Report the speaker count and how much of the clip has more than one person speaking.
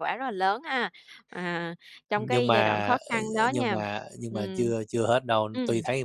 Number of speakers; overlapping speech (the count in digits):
2, about 37%